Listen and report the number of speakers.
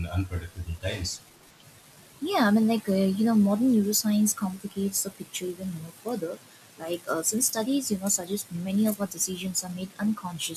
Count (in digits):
2